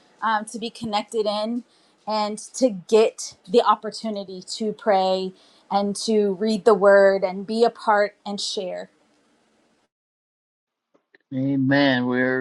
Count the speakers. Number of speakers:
two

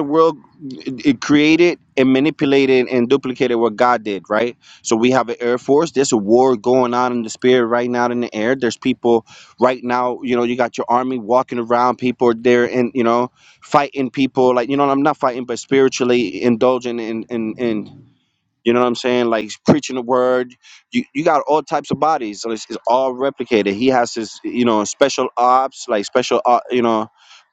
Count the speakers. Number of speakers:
one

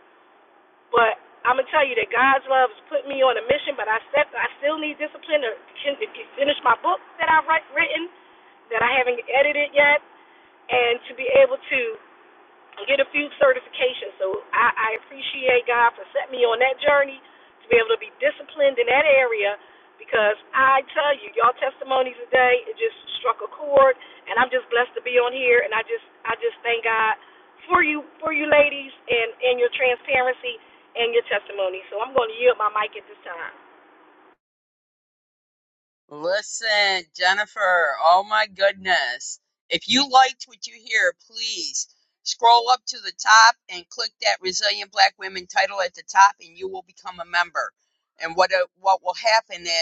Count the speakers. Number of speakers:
two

